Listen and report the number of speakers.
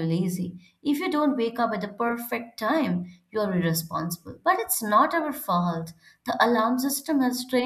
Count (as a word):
one